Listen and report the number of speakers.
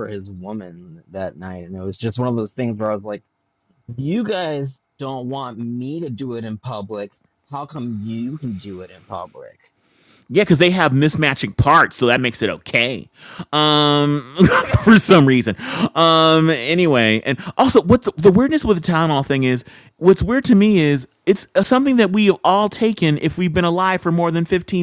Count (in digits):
2